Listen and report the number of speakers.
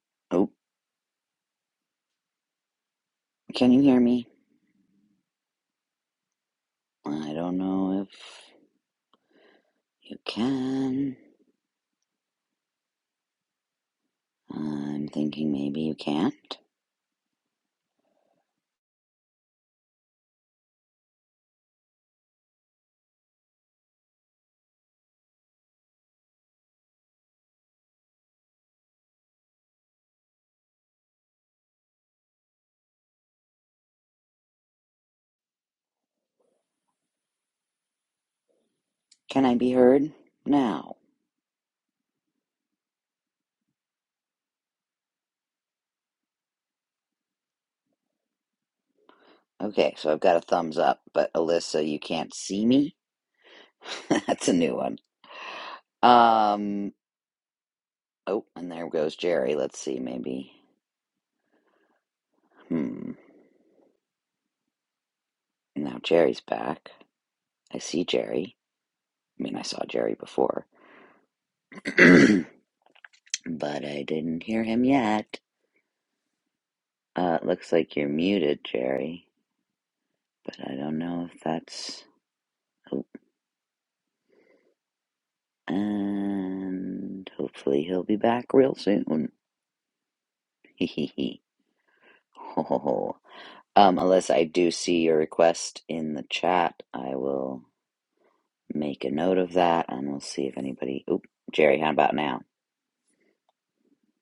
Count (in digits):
1